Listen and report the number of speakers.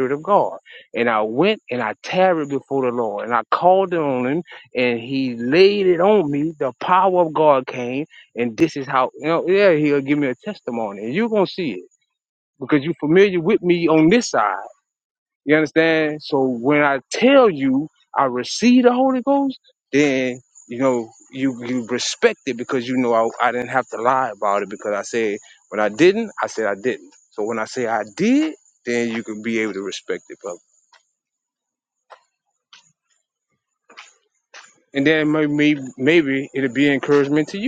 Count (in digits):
1